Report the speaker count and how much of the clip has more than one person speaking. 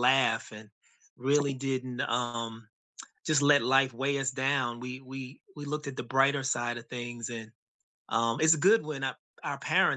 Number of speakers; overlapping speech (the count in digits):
1, no overlap